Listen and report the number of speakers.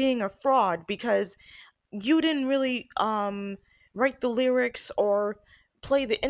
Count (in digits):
1